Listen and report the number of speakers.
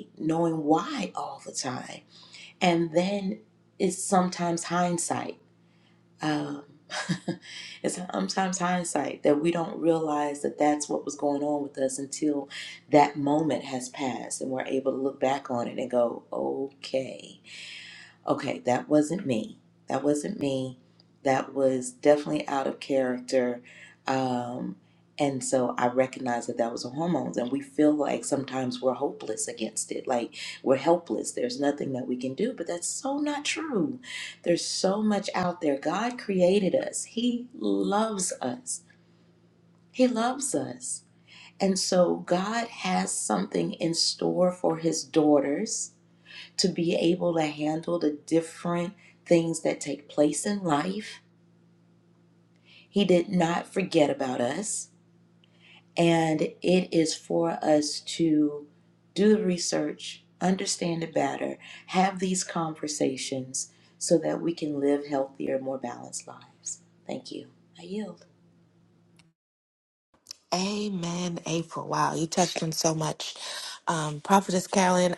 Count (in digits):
2